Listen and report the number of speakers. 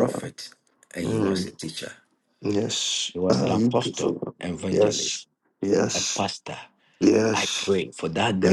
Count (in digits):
2